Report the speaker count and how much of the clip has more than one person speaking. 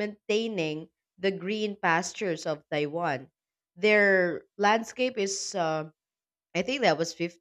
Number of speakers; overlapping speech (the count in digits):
1, no overlap